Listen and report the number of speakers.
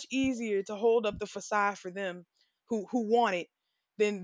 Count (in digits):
1